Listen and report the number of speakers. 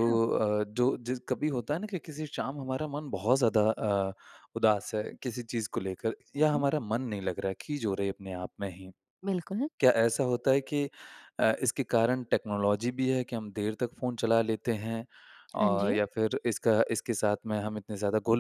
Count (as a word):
two